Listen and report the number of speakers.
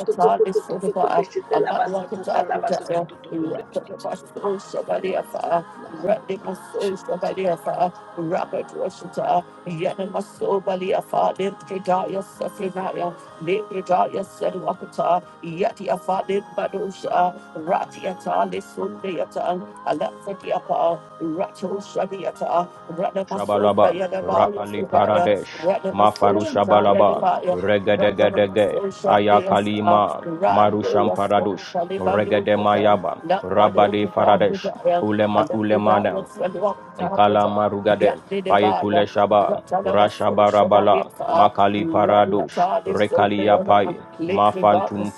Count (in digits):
3